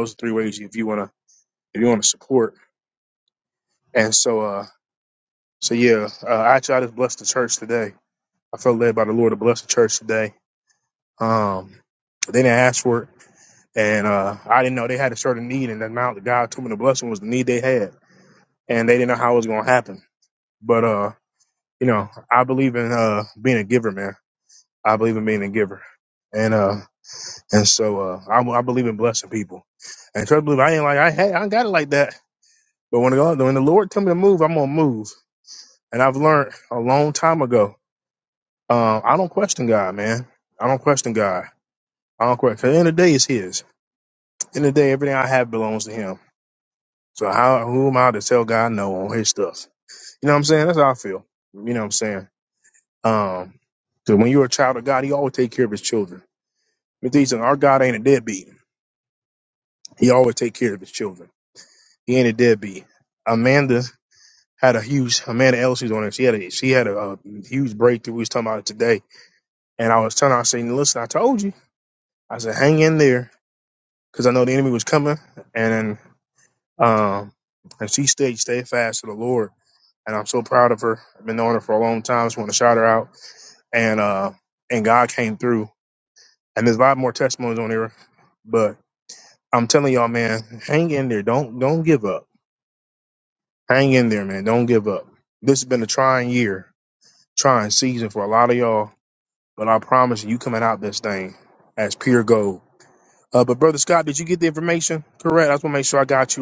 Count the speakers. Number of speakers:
one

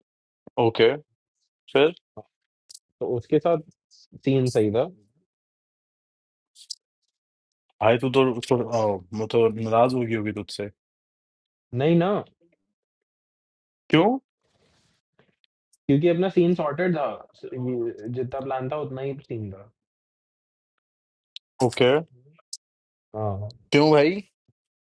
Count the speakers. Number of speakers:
two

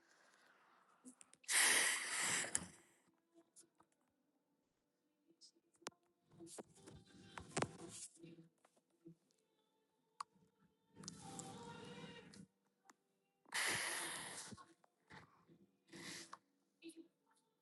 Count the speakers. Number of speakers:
zero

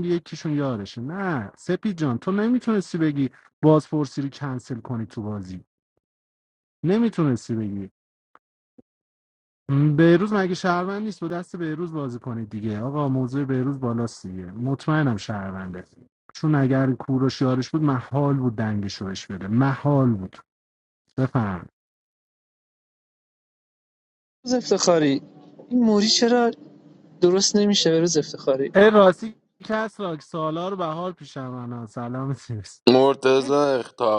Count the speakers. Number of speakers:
three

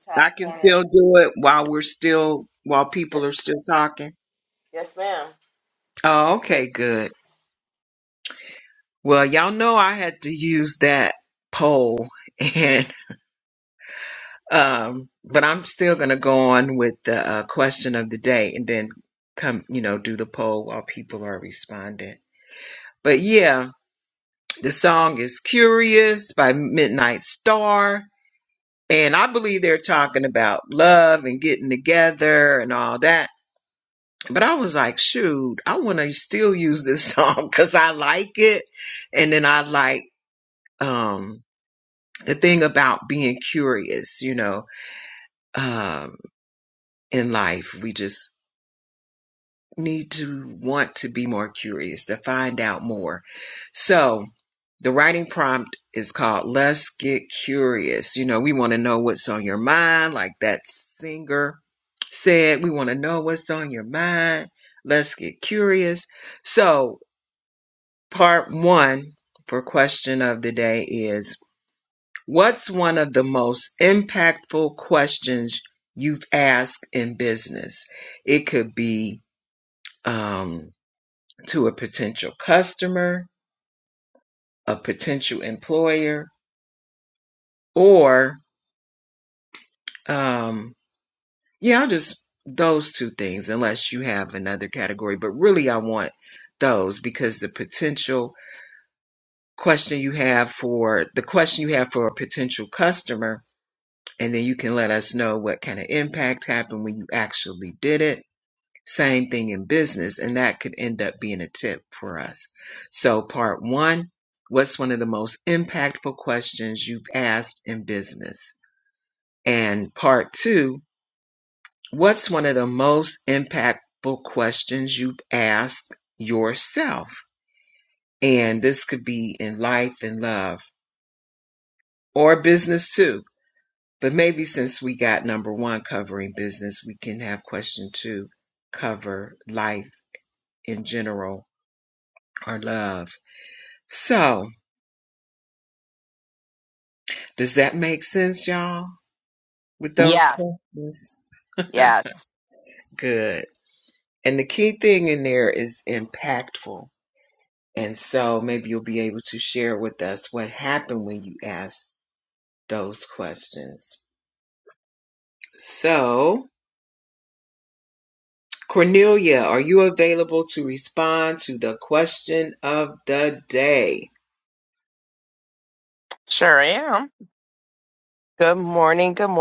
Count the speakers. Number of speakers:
three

